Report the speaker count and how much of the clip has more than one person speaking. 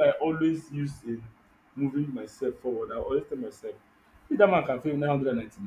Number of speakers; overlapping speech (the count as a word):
one, no overlap